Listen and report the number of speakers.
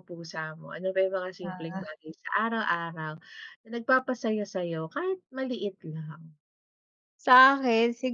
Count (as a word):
two